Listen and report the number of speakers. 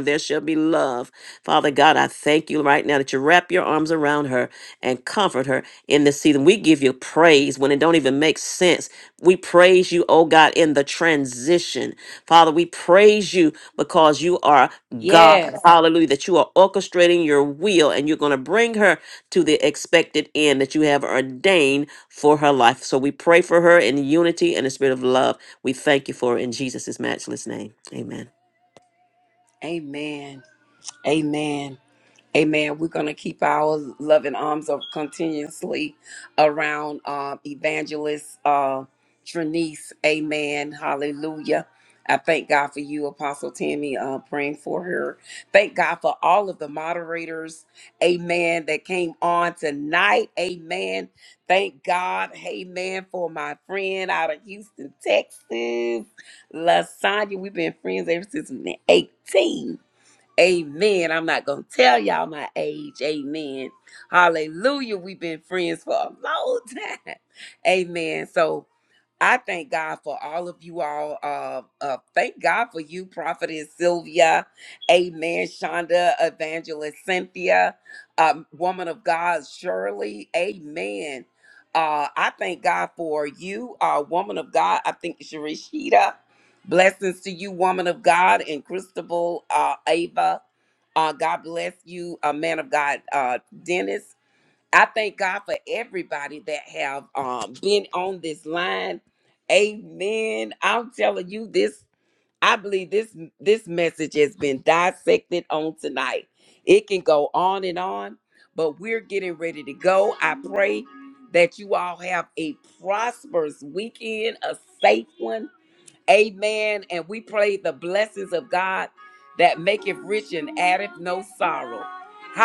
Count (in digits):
2